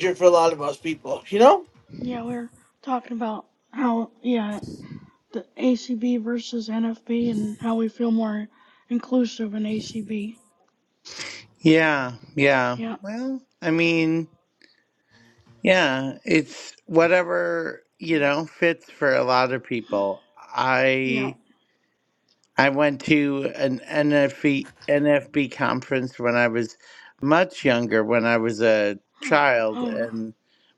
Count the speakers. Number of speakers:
3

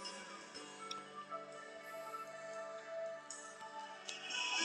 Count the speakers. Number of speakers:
0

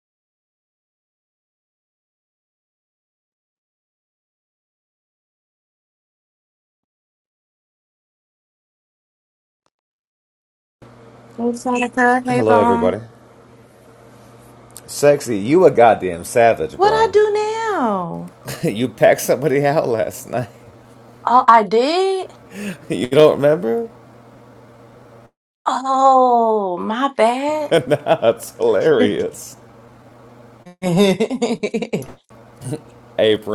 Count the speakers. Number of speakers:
2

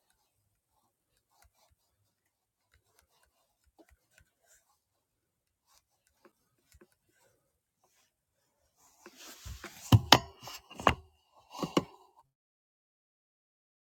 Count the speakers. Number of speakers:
0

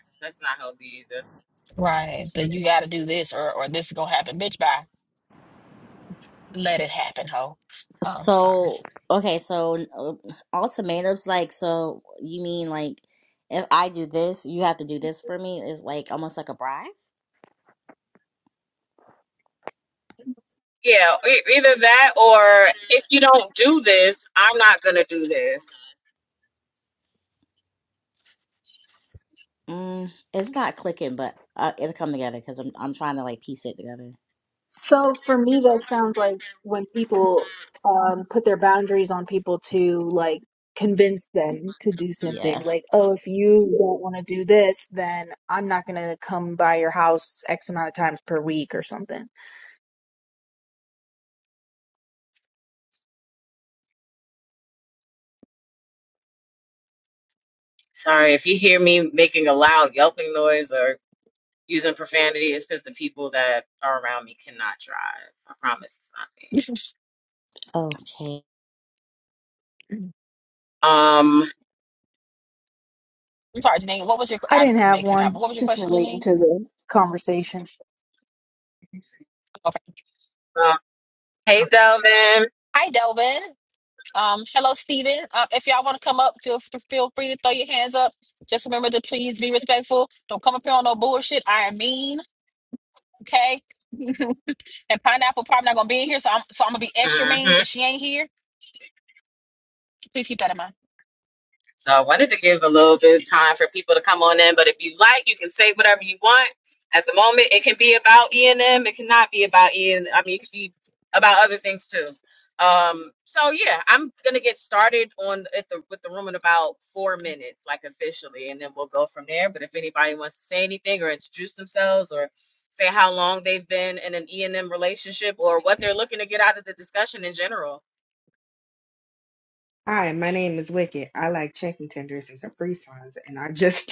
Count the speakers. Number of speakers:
5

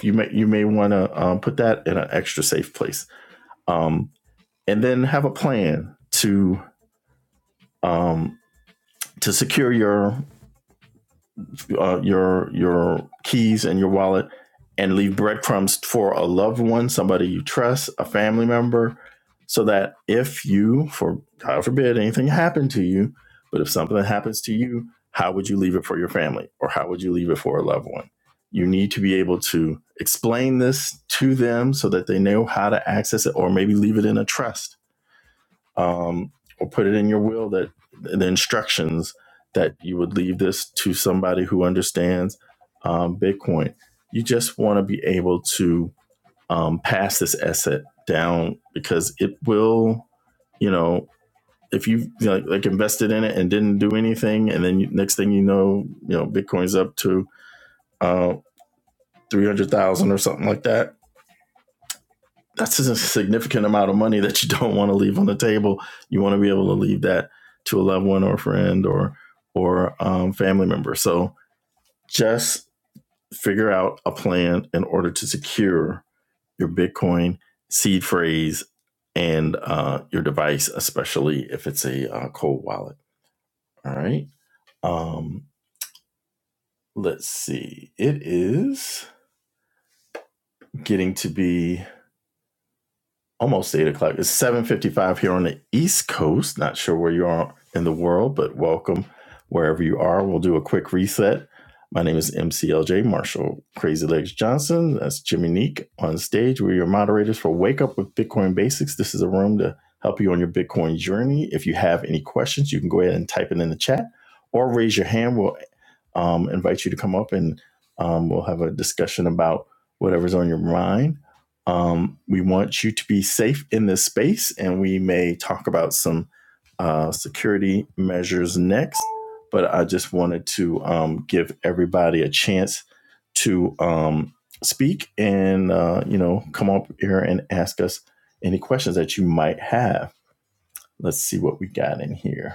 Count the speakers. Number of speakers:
1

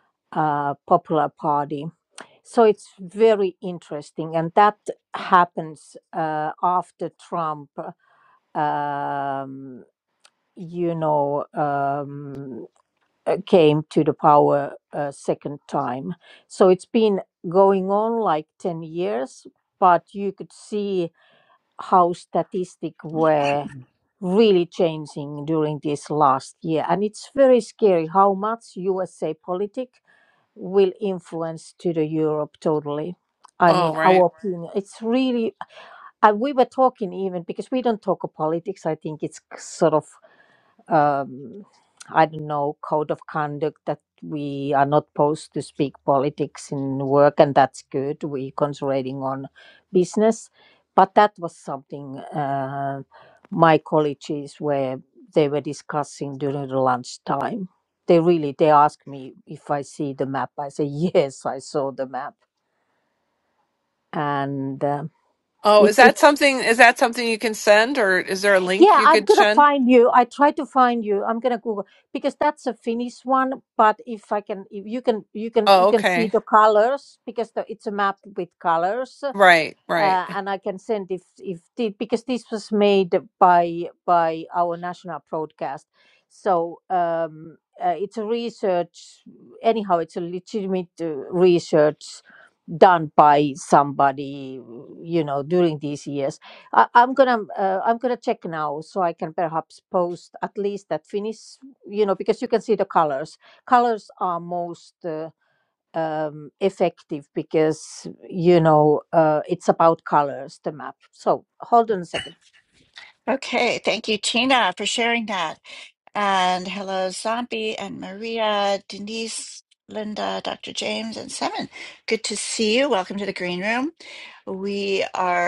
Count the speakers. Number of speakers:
3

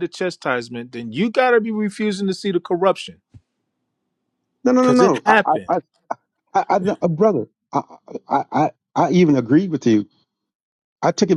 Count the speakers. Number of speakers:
2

